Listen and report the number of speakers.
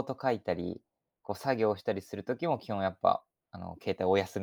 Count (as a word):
one